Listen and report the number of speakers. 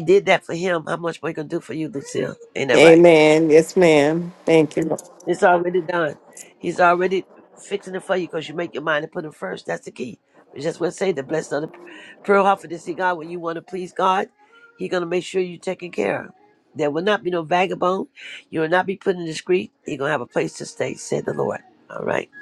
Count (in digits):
2